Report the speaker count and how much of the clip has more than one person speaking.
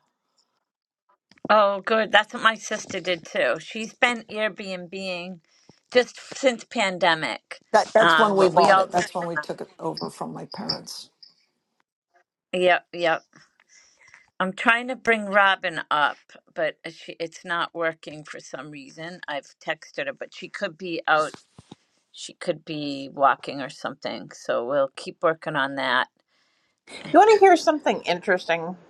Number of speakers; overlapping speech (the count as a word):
three, about 5%